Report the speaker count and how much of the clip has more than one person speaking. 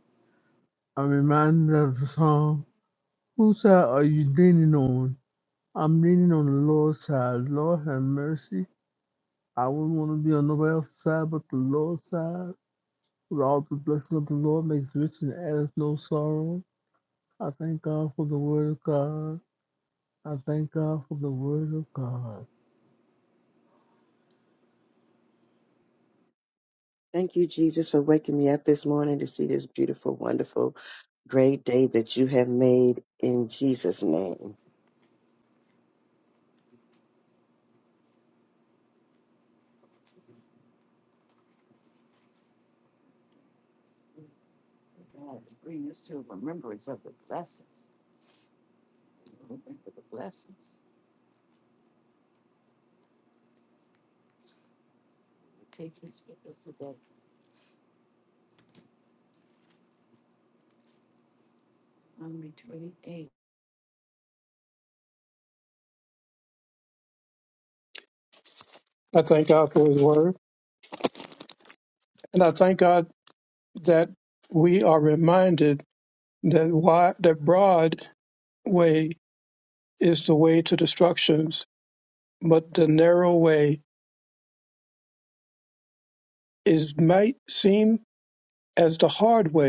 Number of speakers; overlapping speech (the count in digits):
4, no overlap